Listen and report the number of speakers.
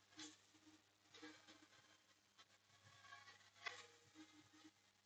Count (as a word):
zero